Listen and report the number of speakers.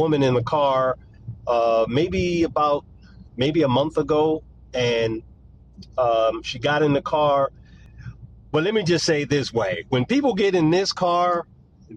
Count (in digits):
1